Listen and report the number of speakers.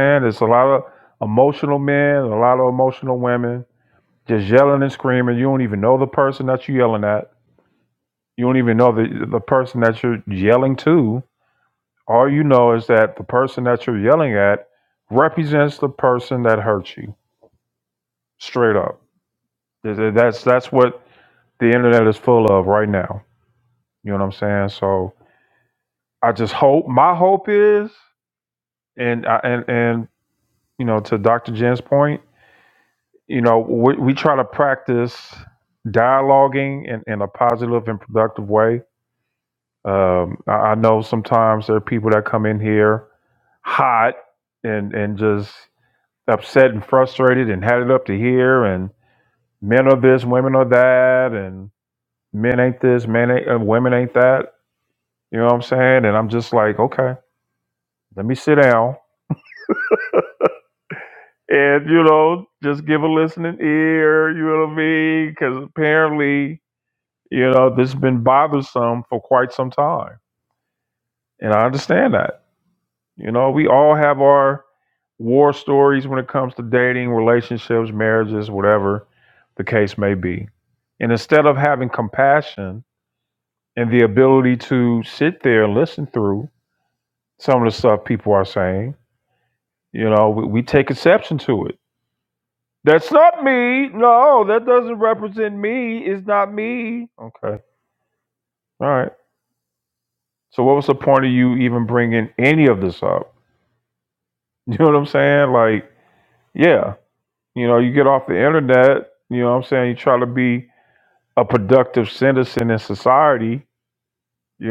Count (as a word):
one